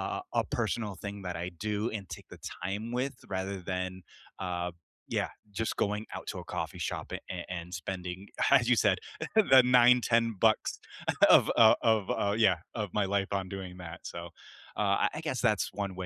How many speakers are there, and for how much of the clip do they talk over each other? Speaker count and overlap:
one, no overlap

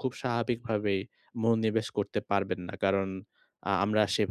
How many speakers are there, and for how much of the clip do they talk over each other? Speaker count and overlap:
one, no overlap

